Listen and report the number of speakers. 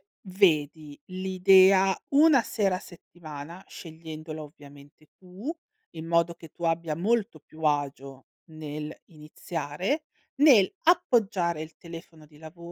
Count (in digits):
1